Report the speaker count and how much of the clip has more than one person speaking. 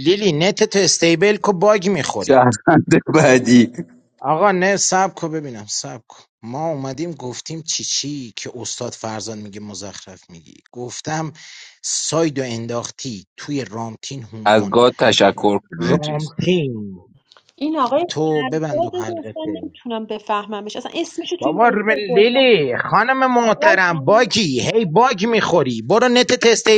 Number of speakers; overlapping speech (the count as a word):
three, about 7%